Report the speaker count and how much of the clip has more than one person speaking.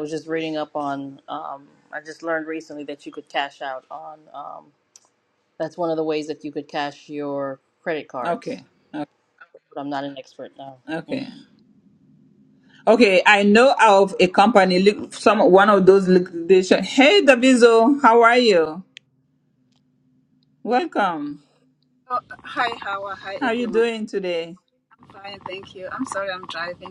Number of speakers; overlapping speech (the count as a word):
three, about 2%